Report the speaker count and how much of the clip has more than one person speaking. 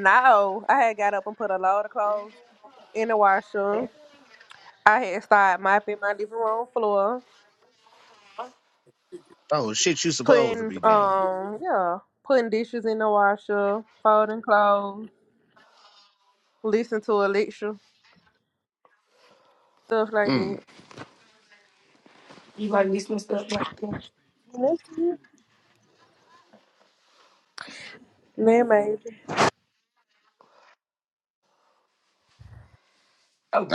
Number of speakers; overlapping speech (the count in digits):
3, about 4%